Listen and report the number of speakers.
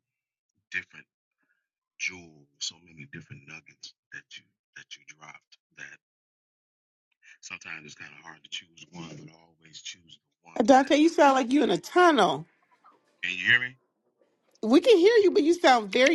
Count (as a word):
two